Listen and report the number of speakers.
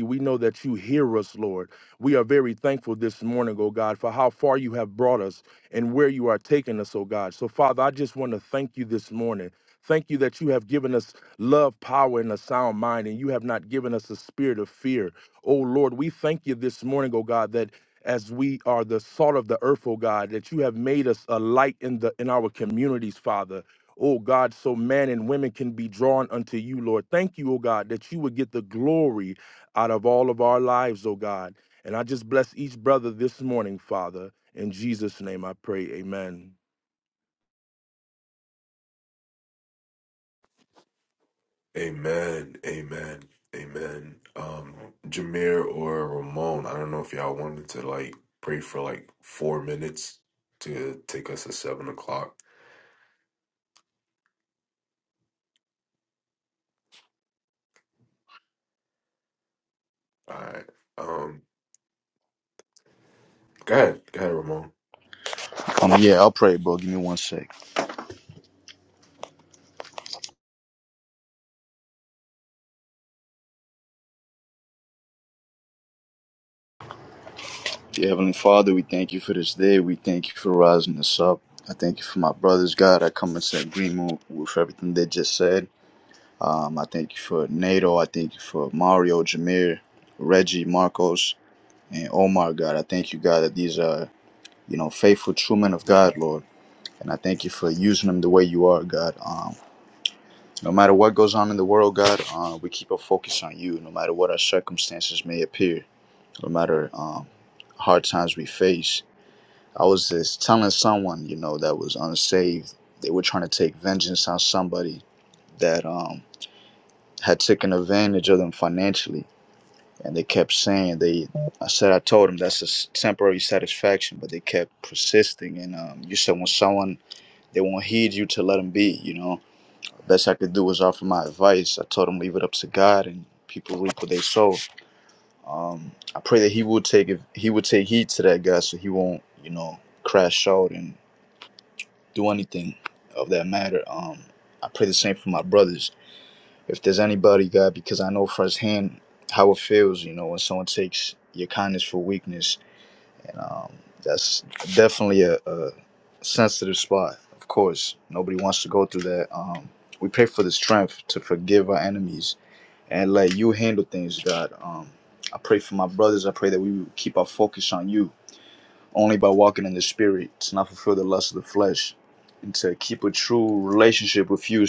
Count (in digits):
3